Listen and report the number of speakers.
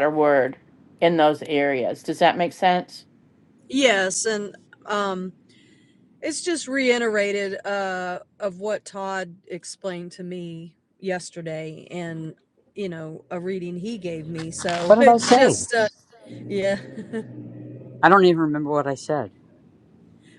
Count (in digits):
3